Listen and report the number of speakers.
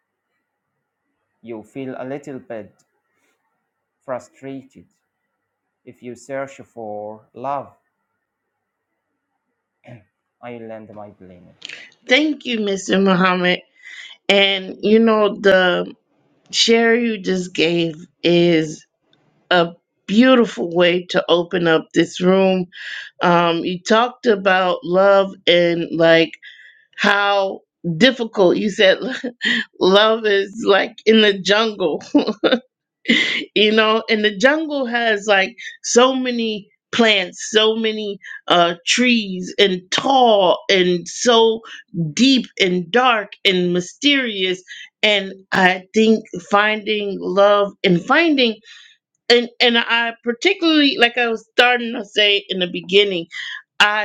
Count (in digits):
2